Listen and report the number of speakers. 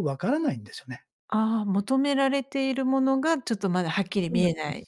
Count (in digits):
2